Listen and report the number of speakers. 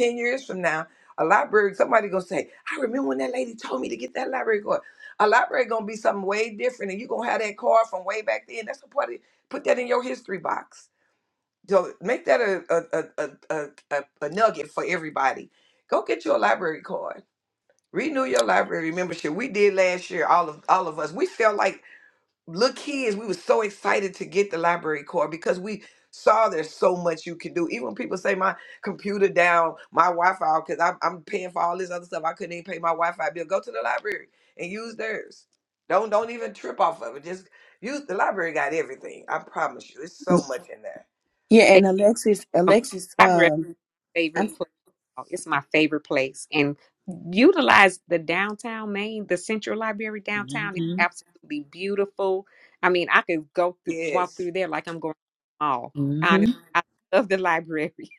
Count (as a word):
three